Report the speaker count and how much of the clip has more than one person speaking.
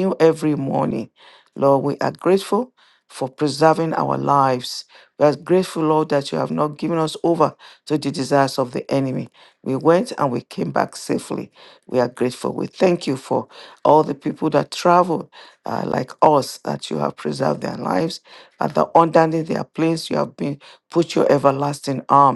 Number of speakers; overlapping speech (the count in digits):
1, no overlap